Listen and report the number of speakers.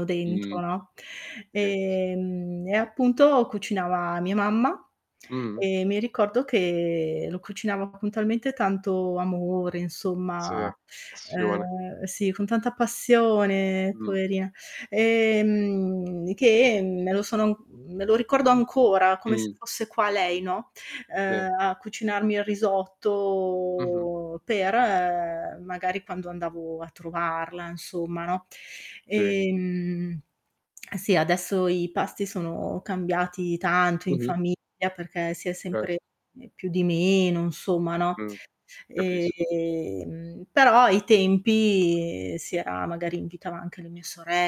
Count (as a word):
two